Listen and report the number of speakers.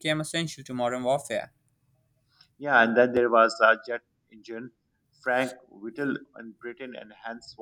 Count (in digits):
2